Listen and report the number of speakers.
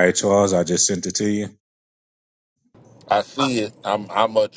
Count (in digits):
2